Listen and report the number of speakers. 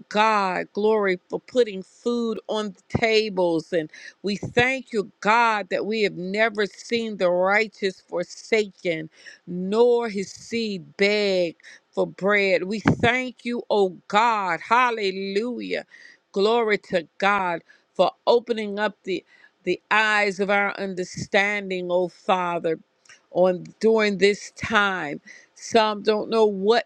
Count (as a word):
one